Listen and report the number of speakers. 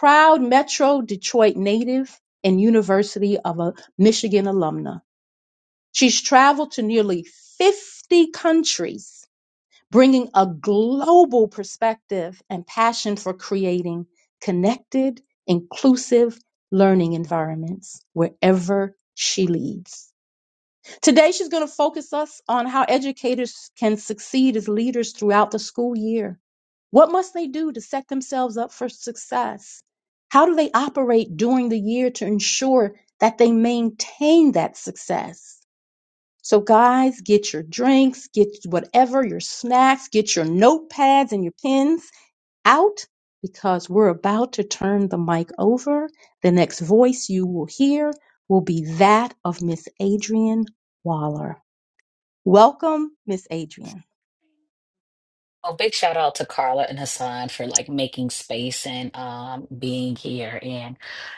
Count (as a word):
two